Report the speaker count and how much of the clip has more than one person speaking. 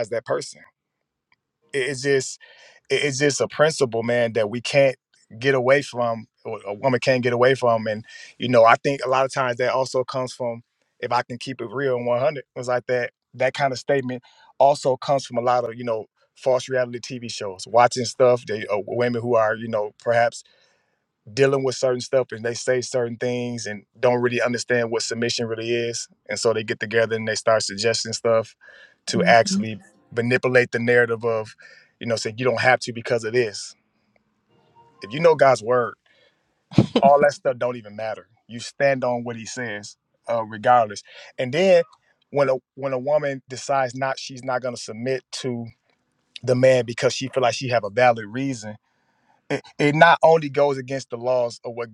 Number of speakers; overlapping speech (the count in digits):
1, no overlap